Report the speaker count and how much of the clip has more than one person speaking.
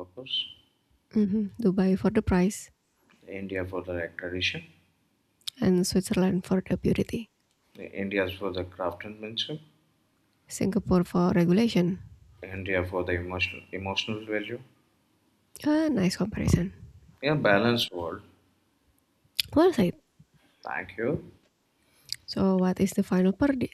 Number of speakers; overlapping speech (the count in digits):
2, no overlap